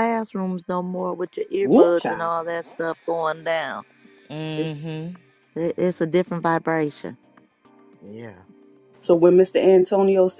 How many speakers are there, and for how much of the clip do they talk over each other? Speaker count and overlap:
3, about 3%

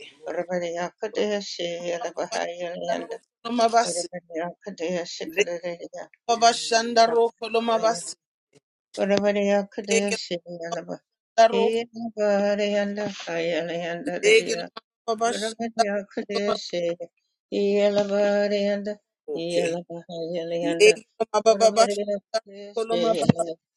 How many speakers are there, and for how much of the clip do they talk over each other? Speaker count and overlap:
2, about 13%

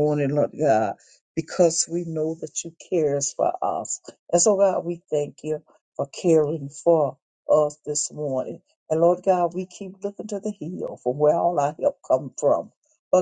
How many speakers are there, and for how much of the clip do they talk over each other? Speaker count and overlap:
1, no overlap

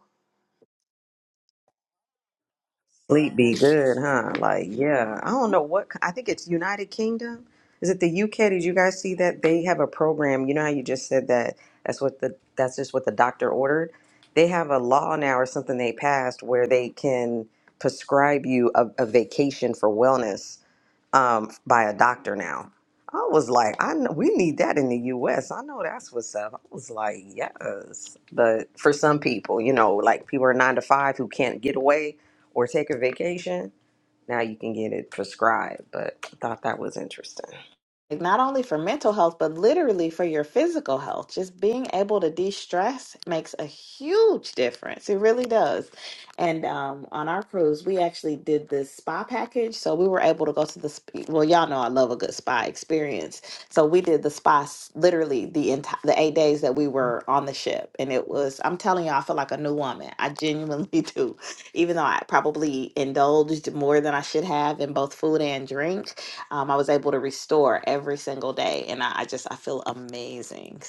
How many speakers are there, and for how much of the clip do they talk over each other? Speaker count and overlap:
2, no overlap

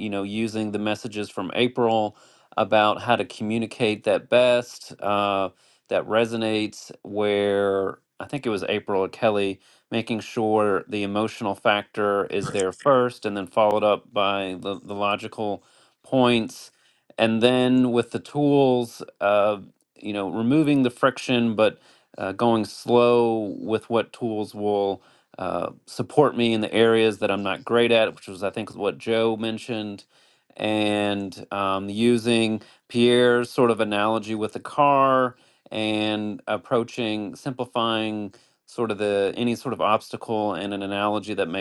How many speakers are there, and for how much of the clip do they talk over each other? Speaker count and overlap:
1, no overlap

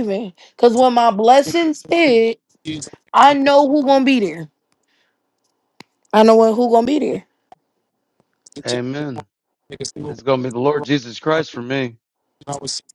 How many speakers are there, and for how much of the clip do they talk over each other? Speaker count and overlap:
3, about 2%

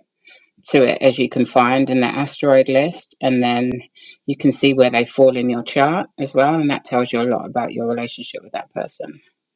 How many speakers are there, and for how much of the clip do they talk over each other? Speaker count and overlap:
1, no overlap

